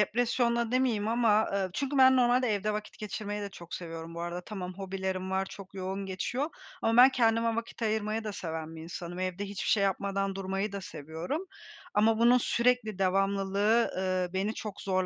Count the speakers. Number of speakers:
one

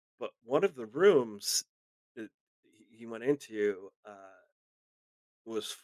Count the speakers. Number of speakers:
one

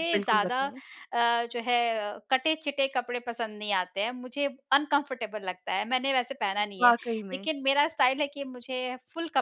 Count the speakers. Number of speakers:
two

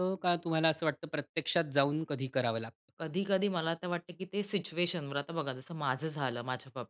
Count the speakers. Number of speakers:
two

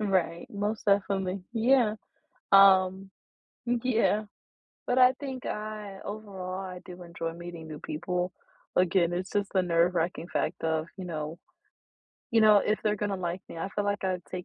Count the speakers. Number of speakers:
one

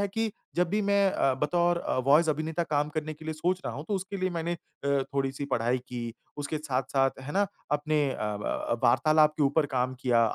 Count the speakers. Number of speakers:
one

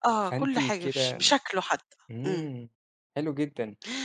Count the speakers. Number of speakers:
two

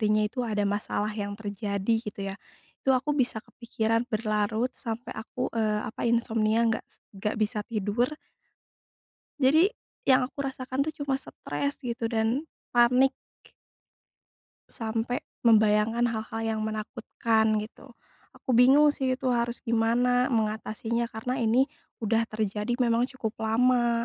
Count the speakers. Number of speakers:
one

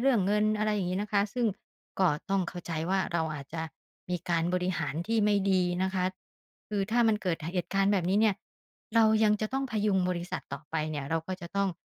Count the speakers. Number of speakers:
one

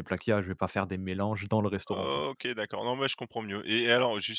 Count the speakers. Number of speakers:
two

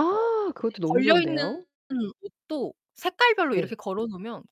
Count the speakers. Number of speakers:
two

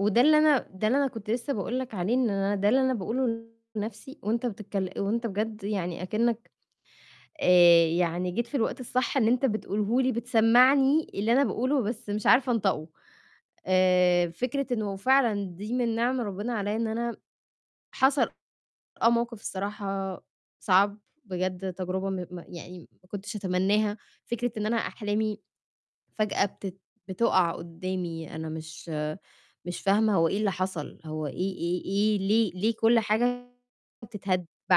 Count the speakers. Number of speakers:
one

